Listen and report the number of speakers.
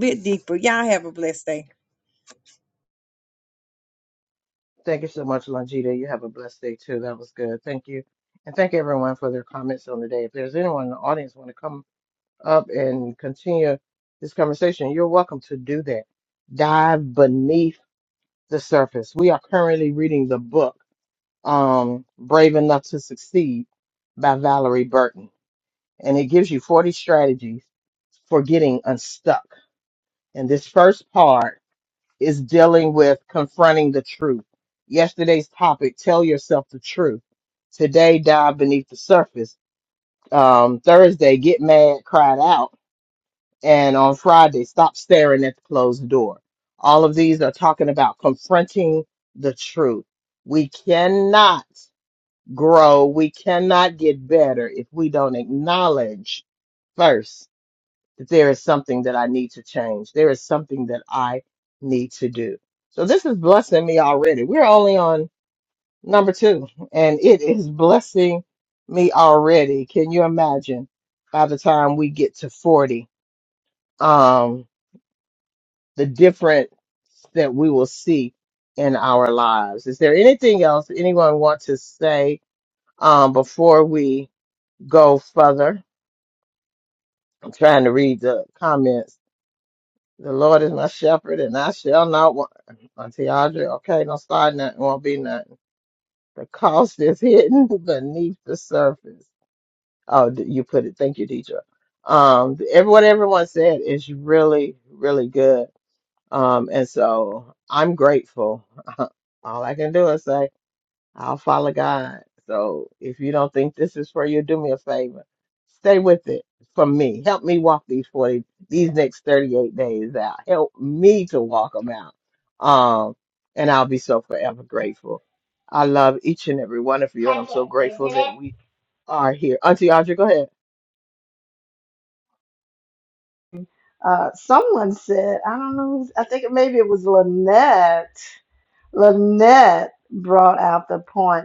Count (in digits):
3